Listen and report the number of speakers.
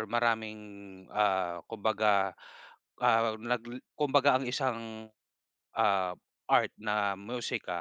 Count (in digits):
1